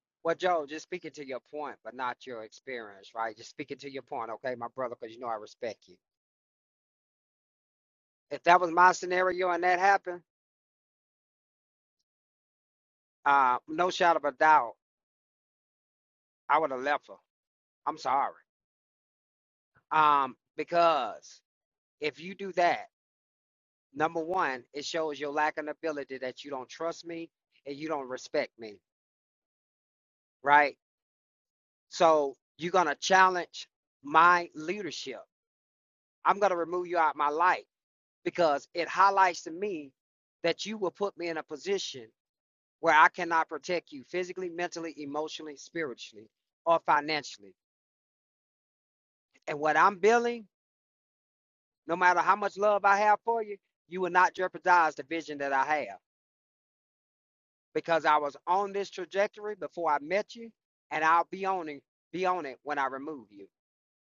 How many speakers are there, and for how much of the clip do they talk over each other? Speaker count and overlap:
1, no overlap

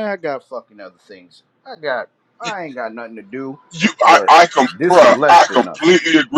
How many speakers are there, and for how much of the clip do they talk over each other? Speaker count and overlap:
2, about 24%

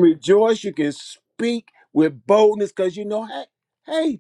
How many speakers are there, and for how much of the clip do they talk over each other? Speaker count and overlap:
1, no overlap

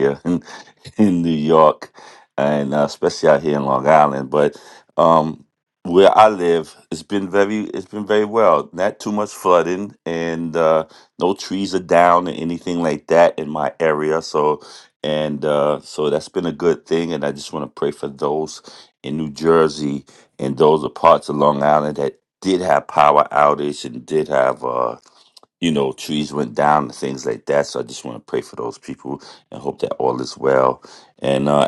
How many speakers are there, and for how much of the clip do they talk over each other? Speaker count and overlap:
1, no overlap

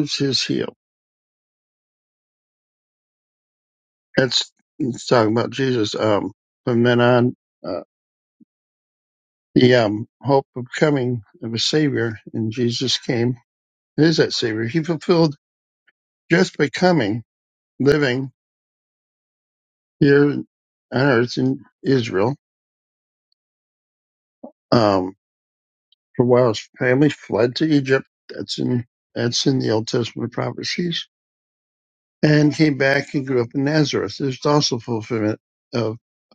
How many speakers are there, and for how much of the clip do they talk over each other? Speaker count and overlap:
1, no overlap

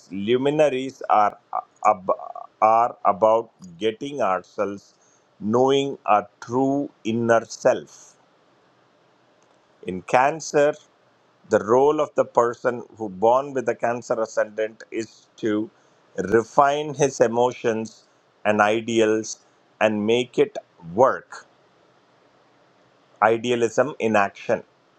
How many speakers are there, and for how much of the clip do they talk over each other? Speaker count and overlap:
1, no overlap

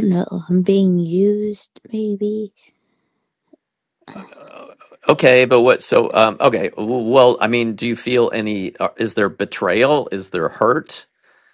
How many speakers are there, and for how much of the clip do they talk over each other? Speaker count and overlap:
2, no overlap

